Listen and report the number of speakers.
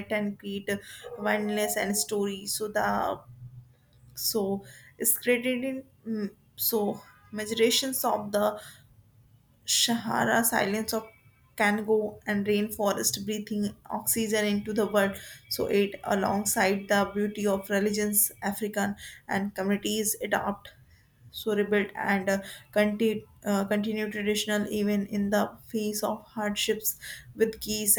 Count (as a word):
one